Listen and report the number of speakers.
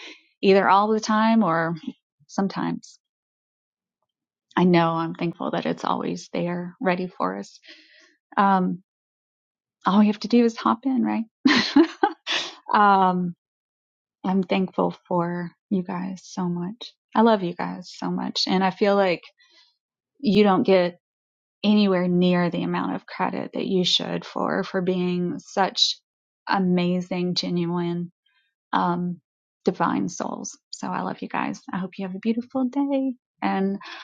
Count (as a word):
one